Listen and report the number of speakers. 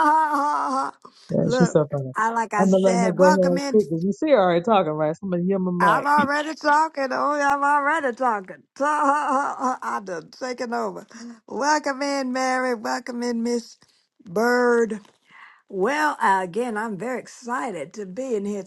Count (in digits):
2